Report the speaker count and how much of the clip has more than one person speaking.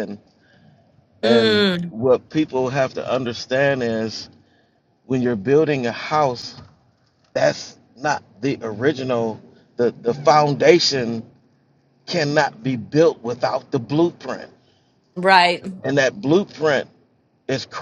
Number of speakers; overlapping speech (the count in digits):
2, about 4%